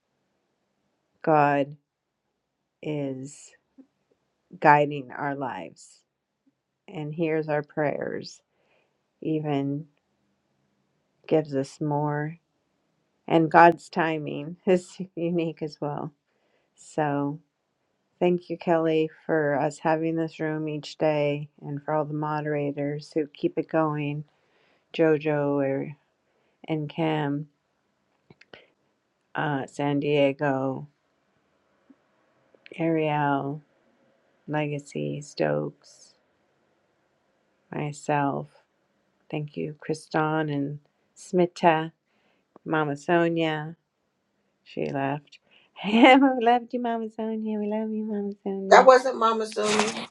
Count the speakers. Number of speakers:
2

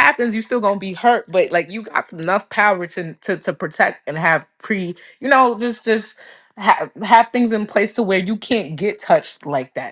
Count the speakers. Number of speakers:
1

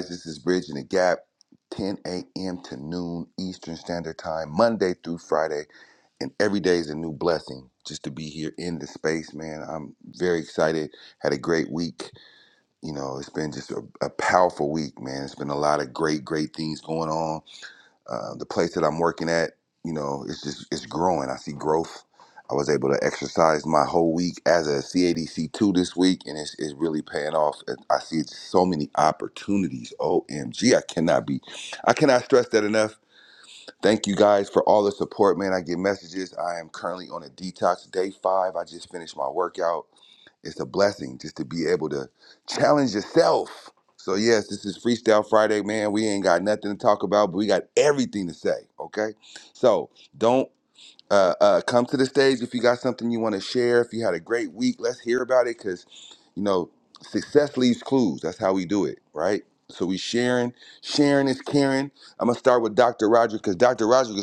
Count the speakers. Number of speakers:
1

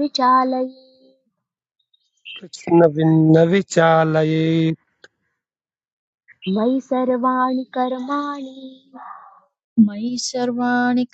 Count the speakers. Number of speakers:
3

